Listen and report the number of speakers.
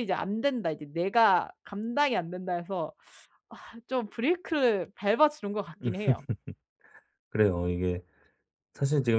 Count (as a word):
two